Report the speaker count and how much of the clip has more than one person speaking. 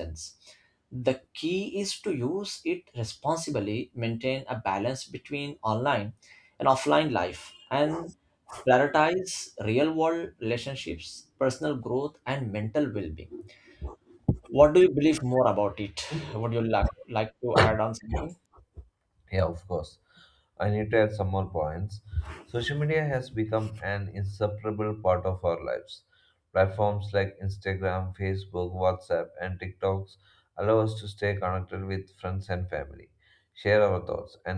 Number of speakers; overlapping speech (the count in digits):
2, no overlap